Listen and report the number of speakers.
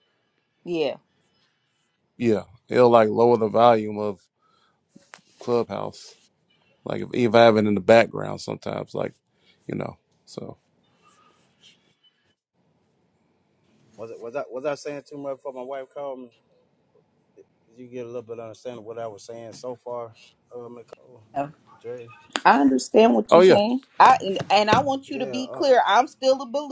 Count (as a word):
three